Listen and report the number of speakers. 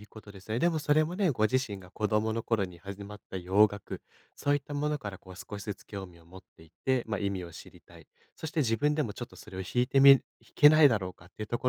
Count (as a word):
one